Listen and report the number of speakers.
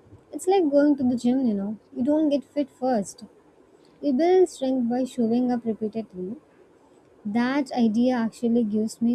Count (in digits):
1